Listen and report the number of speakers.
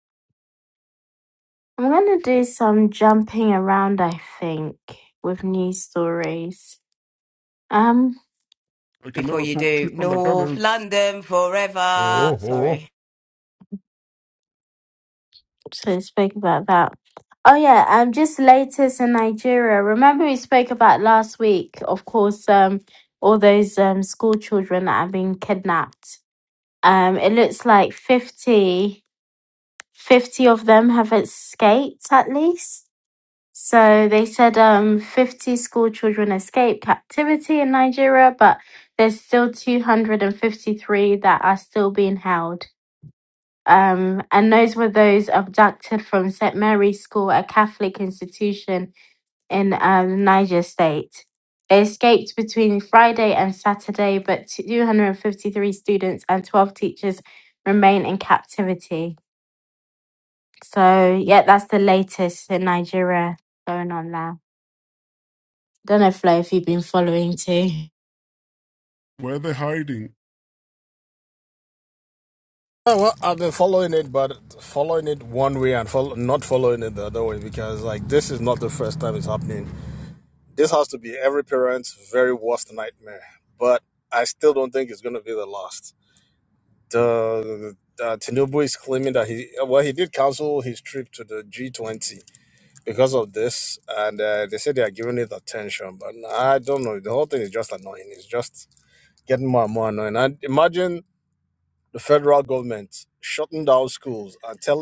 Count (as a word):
four